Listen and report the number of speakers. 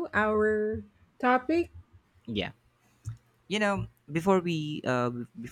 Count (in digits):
2